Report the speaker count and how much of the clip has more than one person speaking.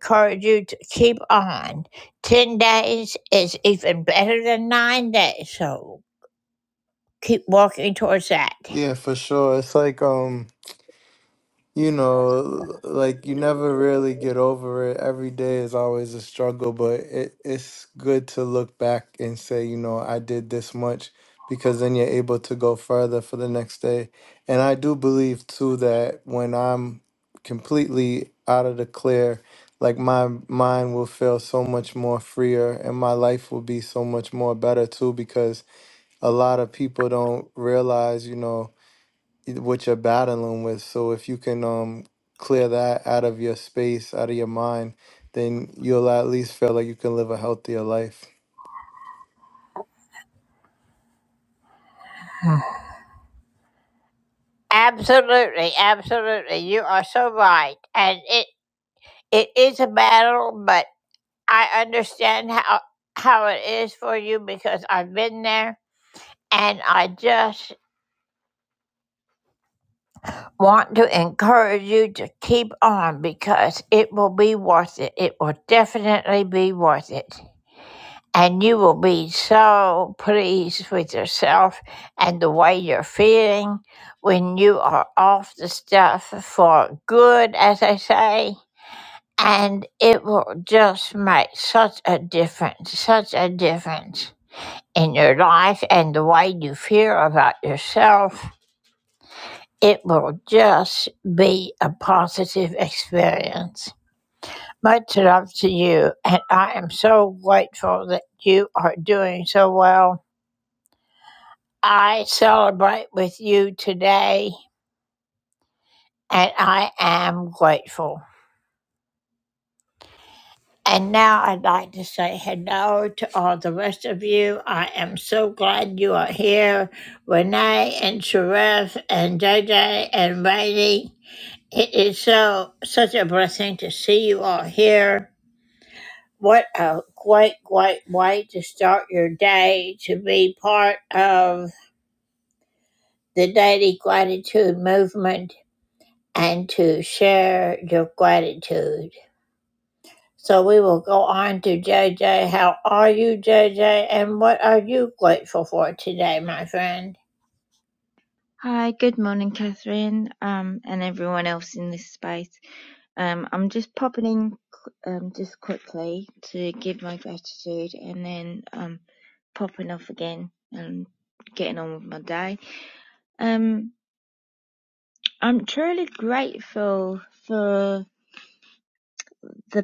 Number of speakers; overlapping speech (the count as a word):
three, no overlap